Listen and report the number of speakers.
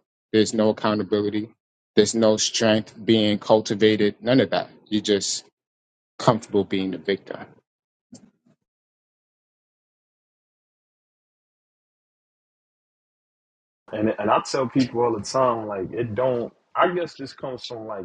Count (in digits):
2